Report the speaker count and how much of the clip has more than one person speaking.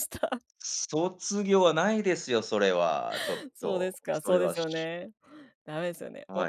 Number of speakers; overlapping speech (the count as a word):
two, about 22%